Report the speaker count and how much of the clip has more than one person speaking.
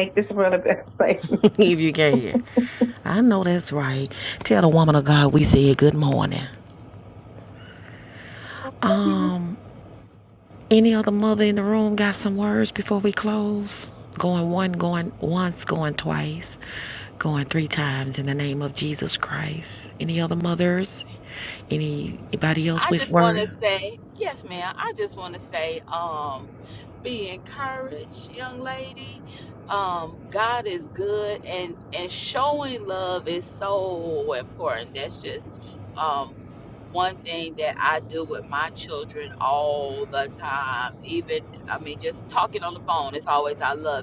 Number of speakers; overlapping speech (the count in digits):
3, about 2%